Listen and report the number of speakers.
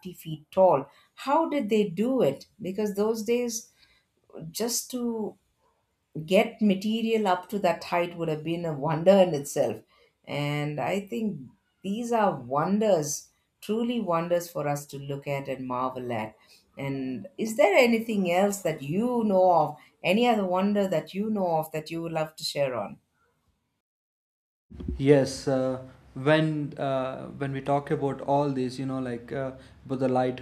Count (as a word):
two